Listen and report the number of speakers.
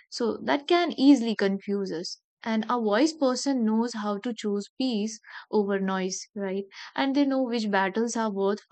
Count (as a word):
one